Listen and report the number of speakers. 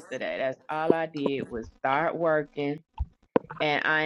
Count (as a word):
one